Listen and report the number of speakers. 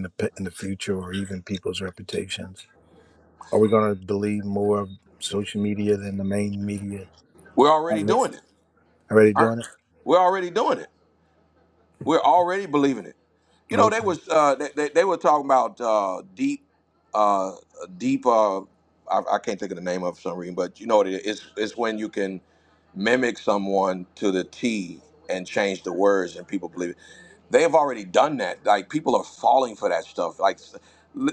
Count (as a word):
two